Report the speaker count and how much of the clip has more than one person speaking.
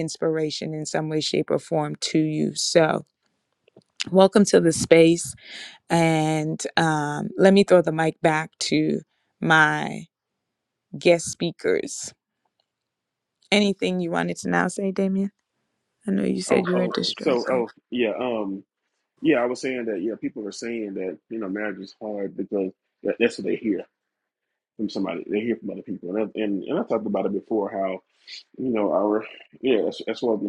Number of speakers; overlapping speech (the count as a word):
two, about 4%